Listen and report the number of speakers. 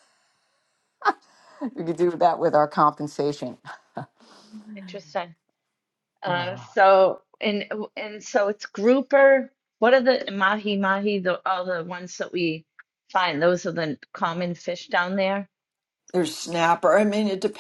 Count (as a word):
three